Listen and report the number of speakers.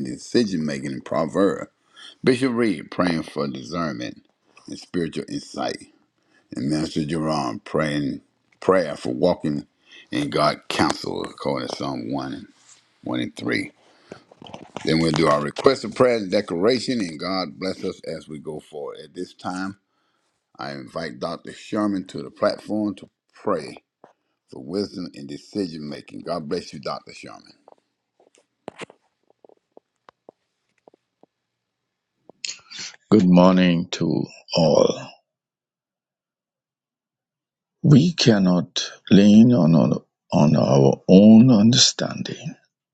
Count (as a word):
two